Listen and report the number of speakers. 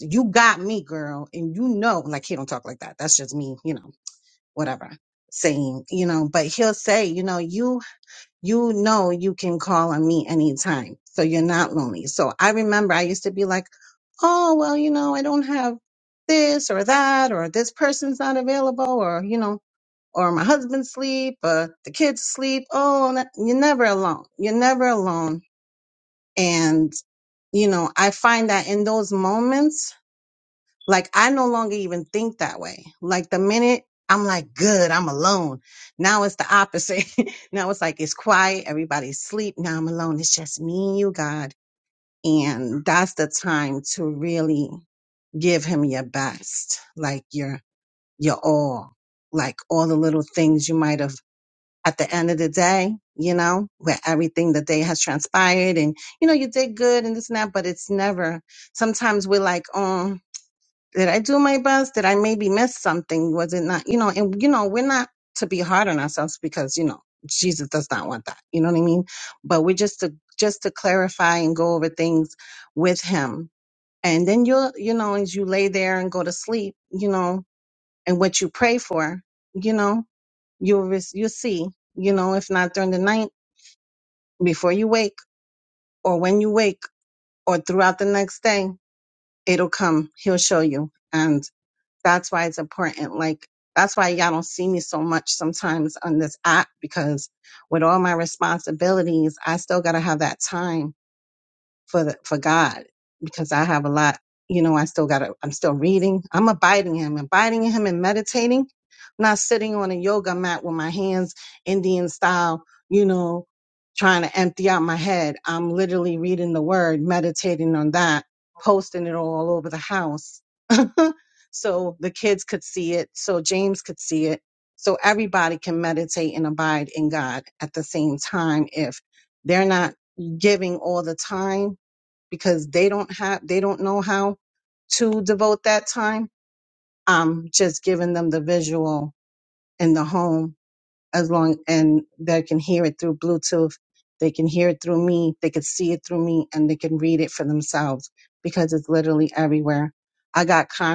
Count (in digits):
1